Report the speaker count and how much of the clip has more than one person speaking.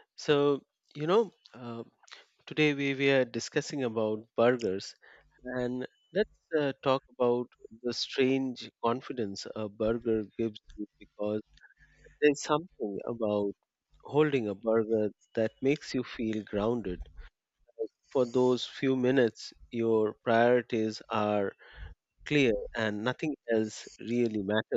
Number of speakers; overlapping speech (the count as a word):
one, no overlap